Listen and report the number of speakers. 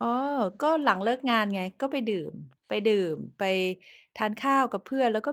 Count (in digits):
1